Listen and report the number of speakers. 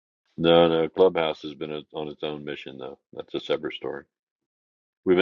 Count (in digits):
1